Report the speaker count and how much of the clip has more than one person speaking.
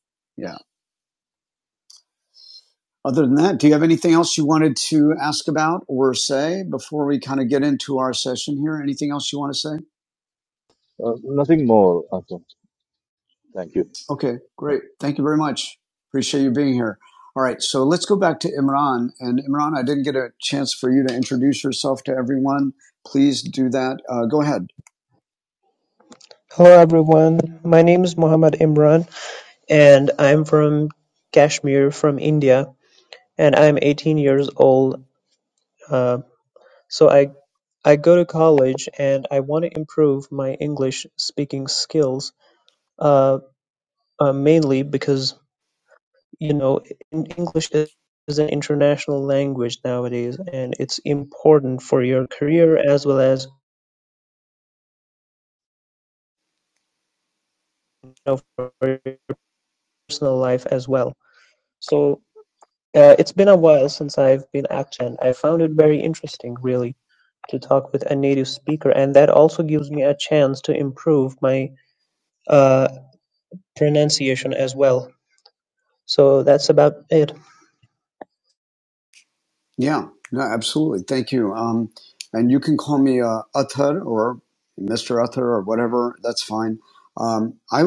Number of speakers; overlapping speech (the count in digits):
3, no overlap